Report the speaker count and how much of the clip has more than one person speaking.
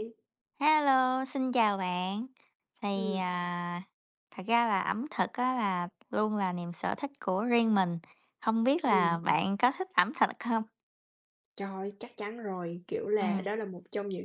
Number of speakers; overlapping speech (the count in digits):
2, about 6%